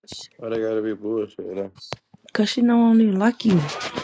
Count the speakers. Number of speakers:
2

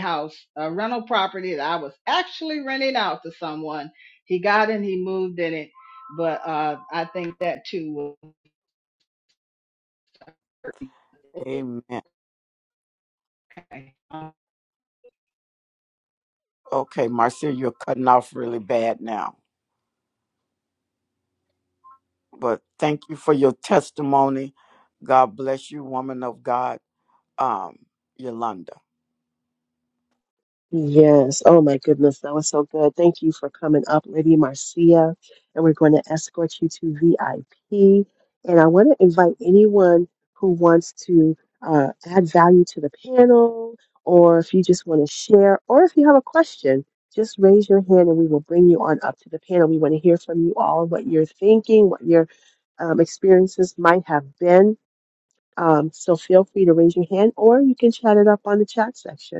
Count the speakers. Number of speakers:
3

